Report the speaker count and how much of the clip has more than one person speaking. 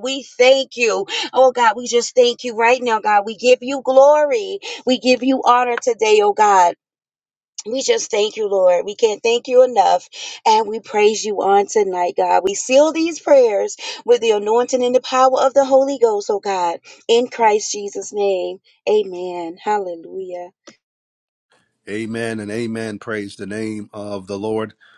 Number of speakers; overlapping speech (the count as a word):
two, no overlap